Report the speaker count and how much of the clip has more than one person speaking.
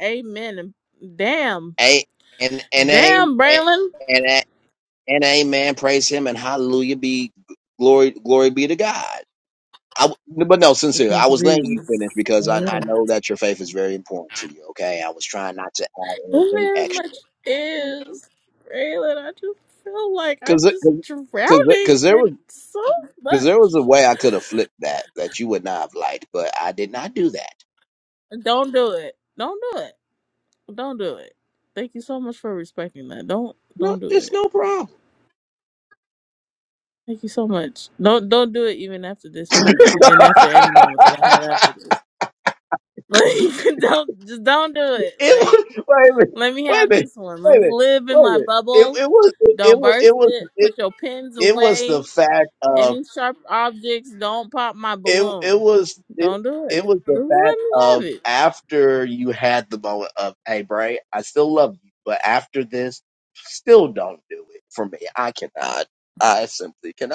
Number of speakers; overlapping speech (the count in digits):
2, about 15%